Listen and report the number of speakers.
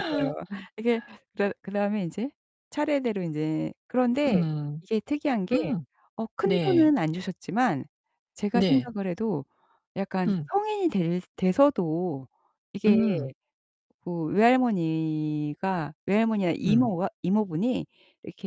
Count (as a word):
two